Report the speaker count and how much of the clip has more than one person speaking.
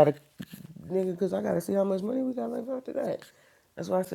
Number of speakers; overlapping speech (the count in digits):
1, no overlap